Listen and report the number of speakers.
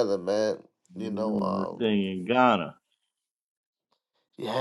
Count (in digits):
2